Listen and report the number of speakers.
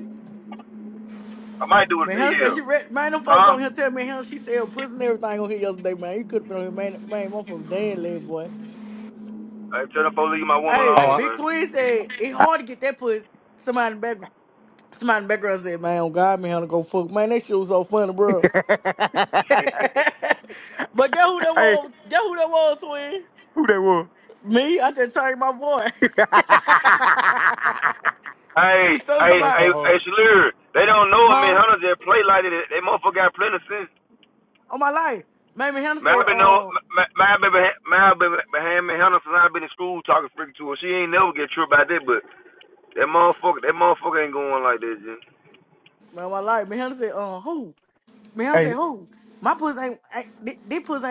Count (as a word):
three